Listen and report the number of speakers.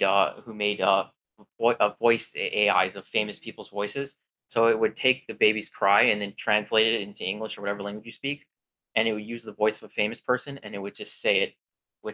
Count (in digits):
1